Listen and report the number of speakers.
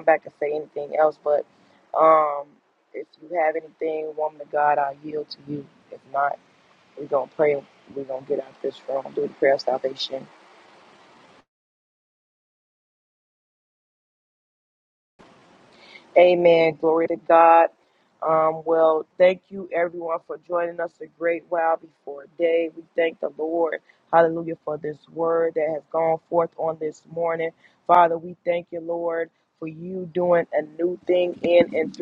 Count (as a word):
one